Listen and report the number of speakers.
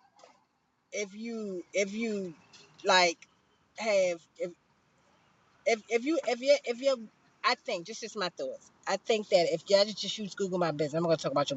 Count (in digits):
1